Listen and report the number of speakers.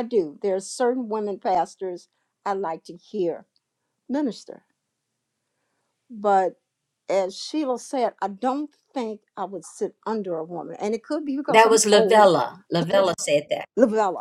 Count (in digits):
2